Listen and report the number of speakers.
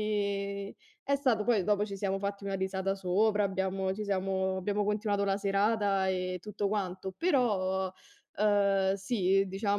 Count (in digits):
1